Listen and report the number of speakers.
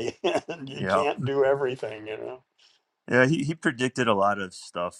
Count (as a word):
two